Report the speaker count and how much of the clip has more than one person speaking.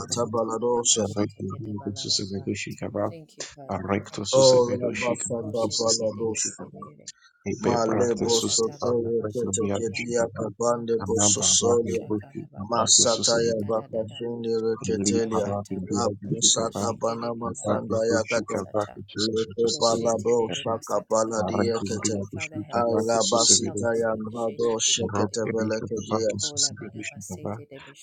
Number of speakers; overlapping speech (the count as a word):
three, about 80%